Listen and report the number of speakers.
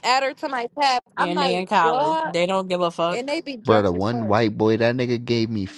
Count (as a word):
three